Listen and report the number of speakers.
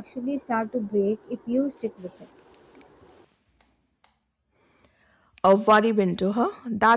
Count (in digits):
2